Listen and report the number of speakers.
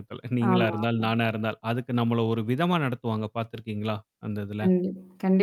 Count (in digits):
2